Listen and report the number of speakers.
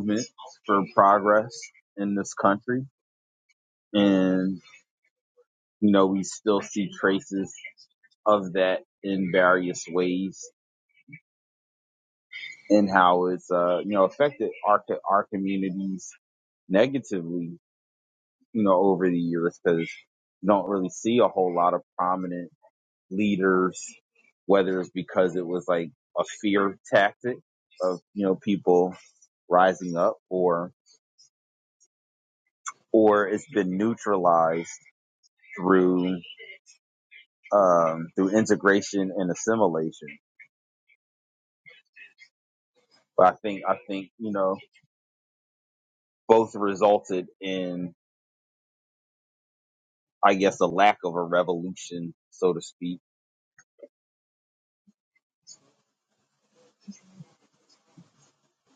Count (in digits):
1